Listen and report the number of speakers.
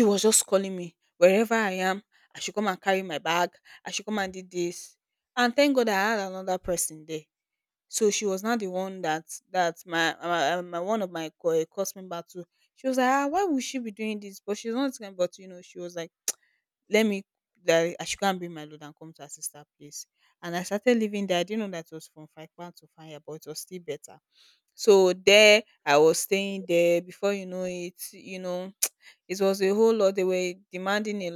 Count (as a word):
one